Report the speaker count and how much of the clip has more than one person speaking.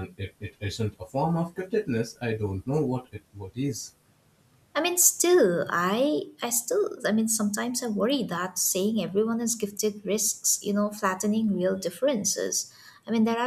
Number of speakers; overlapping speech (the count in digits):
2, no overlap